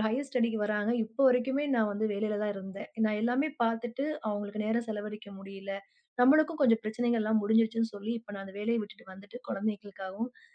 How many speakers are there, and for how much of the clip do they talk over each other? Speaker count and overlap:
1, no overlap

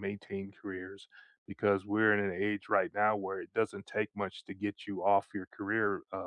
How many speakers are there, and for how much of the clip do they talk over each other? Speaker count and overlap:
1, no overlap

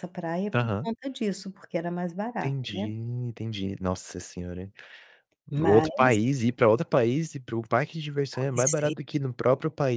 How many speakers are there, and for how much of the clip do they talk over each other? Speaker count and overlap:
2, about 18%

